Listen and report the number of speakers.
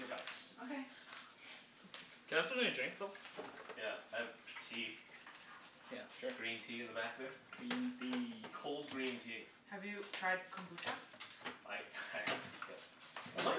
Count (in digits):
3